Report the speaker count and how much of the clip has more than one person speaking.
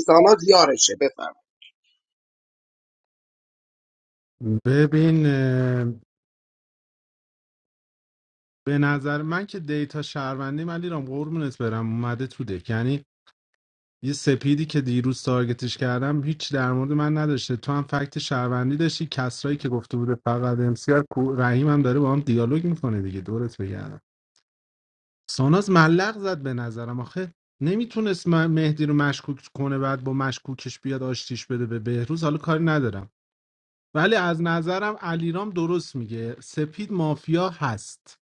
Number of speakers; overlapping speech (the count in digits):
2, no overlap